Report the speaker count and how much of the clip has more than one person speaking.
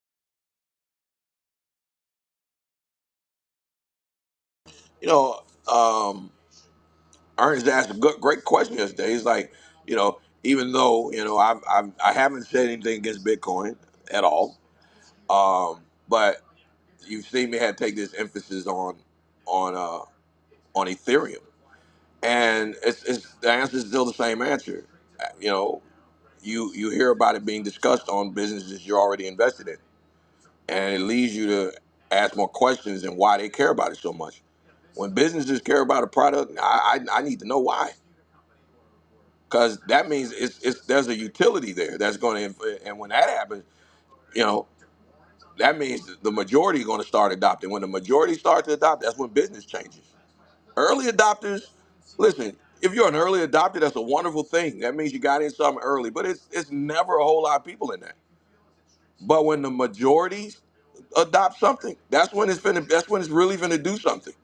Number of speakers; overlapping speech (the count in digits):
1, no overlap